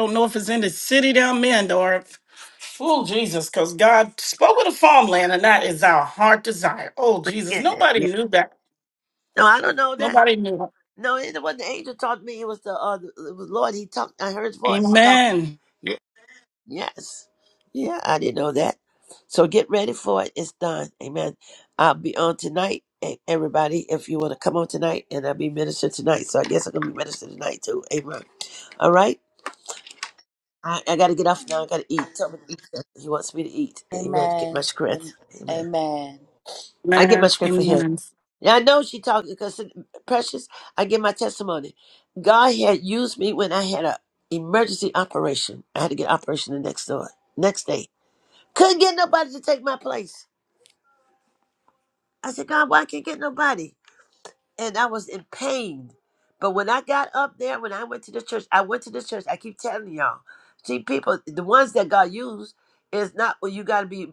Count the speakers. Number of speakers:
3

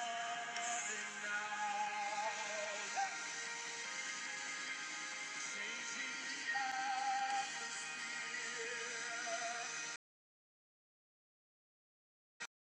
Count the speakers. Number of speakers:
0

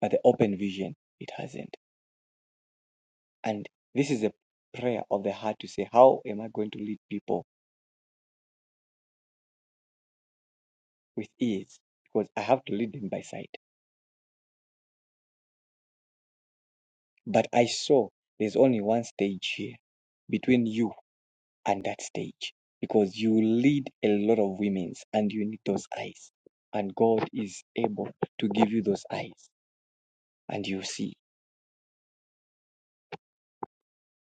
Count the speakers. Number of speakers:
1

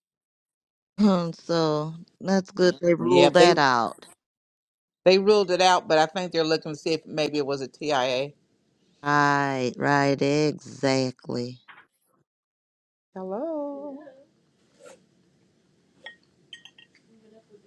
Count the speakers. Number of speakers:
2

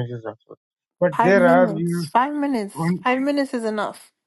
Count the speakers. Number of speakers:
2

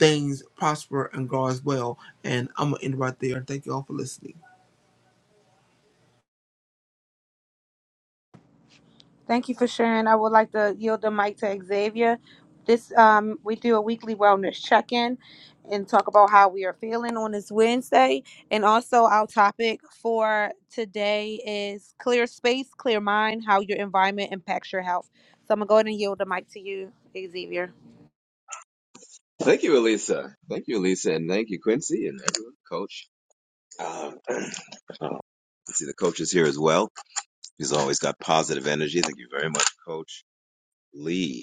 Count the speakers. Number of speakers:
3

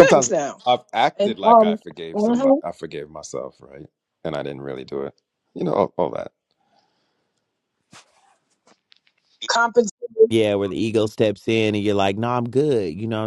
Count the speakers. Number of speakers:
3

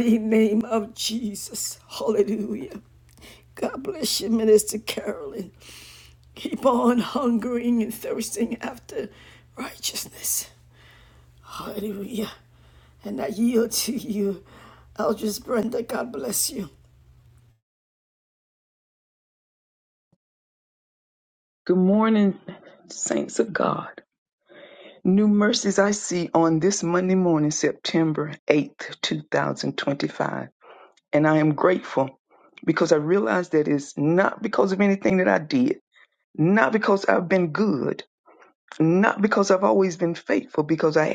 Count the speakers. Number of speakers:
2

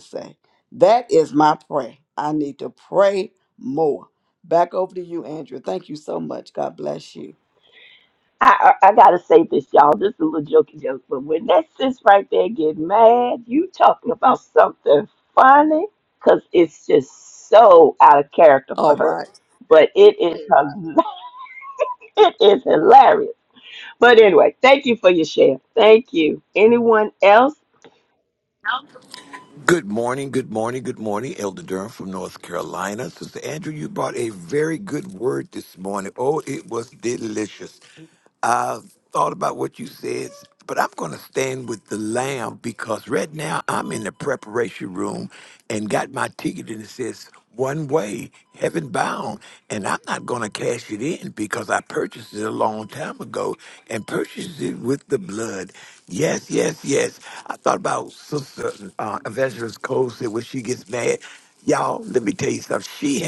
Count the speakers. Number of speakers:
3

